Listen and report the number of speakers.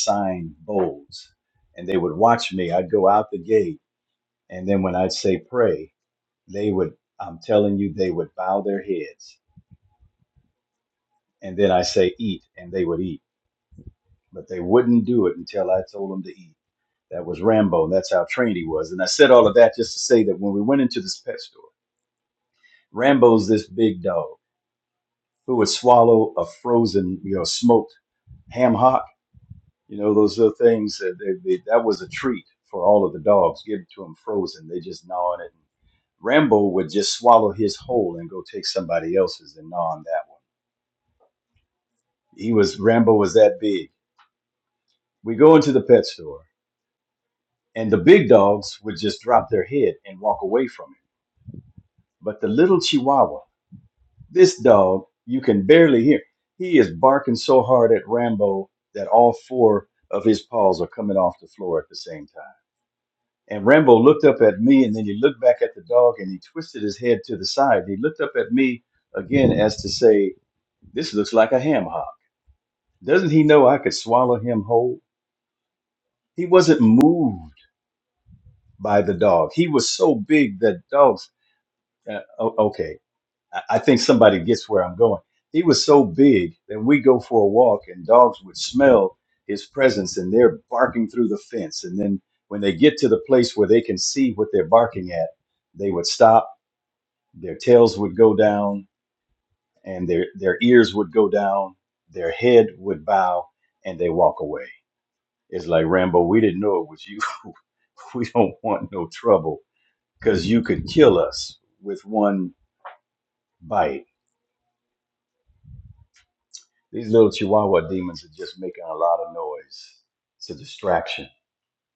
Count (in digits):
1